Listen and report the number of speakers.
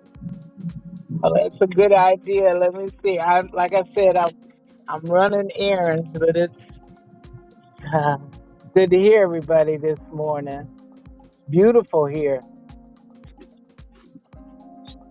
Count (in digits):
1